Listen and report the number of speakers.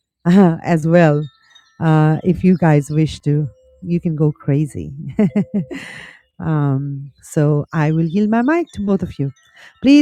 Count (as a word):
one